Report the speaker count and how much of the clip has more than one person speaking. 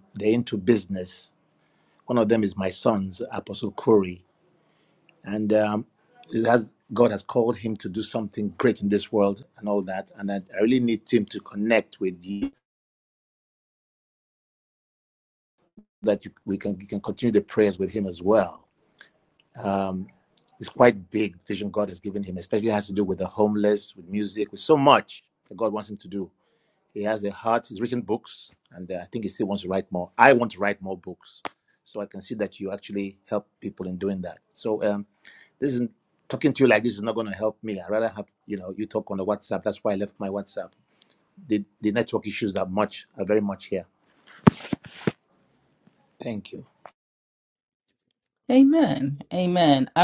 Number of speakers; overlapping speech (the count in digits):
2, no overlap